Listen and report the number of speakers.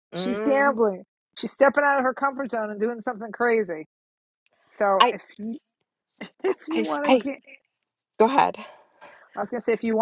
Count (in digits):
2